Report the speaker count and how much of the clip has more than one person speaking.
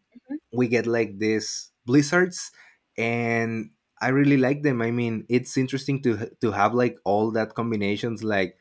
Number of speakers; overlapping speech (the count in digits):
1, no overlap